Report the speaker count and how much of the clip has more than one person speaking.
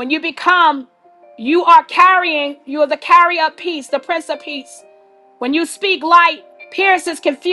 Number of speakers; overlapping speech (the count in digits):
1, no overlap